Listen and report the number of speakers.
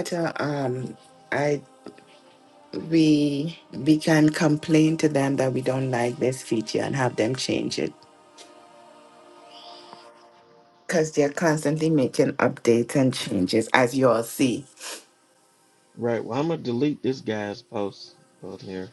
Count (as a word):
two